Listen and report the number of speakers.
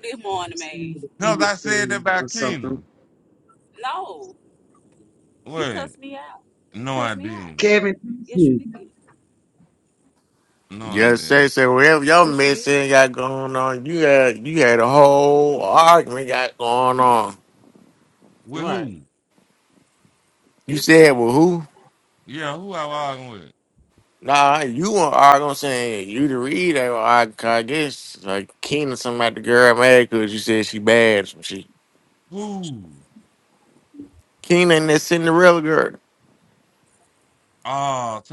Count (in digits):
4